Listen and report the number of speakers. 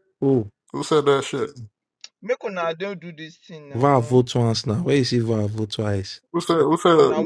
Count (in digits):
3